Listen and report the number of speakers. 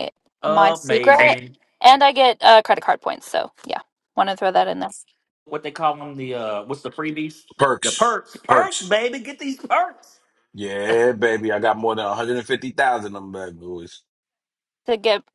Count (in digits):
3